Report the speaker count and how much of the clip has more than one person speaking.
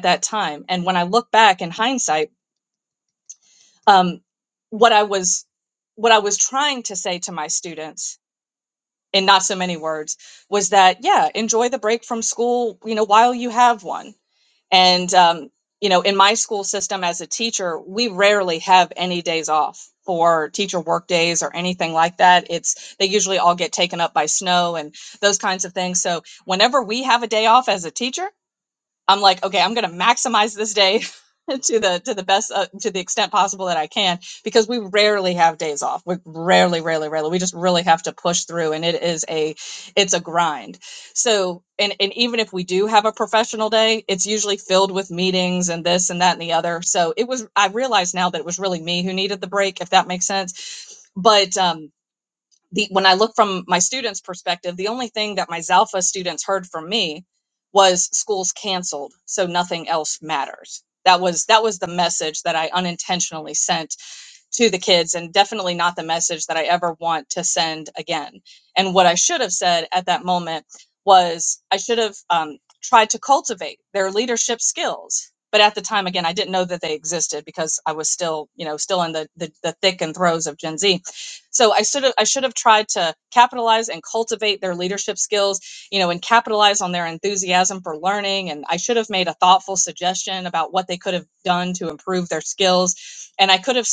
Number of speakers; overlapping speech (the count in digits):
1, no overlap